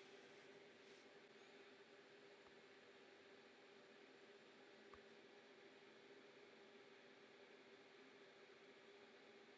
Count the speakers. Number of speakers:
zero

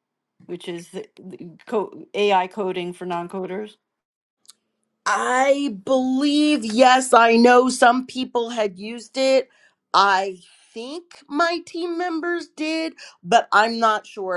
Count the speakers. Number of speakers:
two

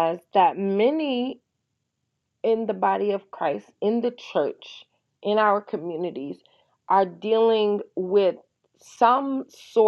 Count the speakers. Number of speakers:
one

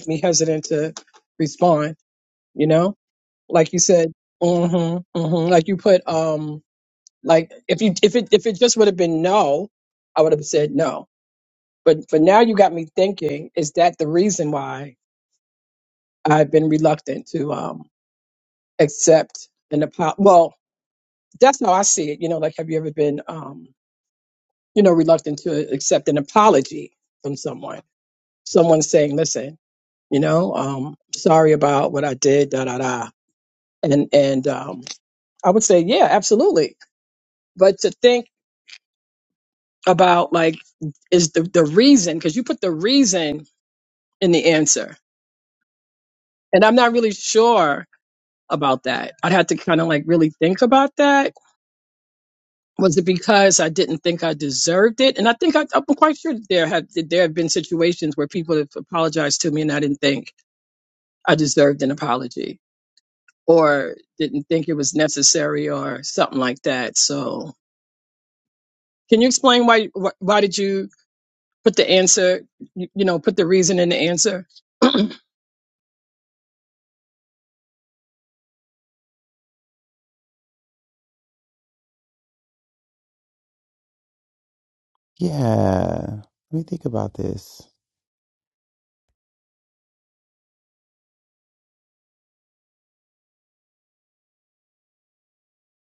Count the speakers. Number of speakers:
two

